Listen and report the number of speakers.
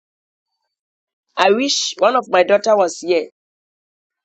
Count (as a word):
one